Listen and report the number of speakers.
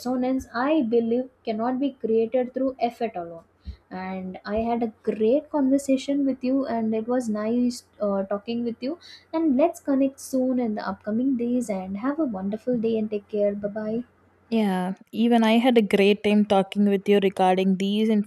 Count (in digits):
2